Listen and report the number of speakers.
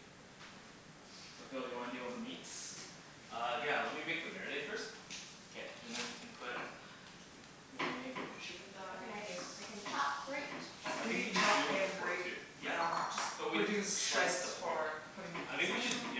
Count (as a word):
four